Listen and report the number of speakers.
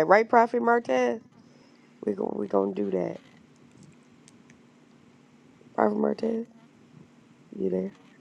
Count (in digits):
1